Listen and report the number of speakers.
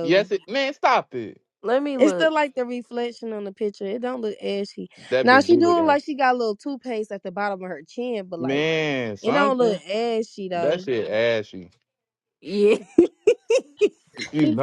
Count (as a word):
three